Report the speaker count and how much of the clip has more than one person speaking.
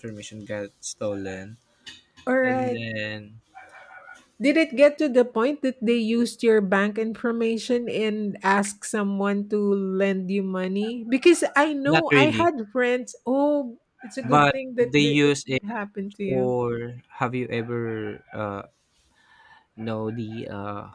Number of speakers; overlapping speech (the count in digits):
2, about 12%